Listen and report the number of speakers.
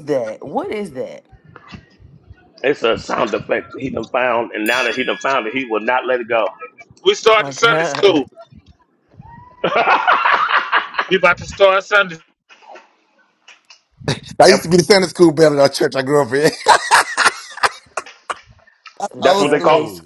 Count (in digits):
4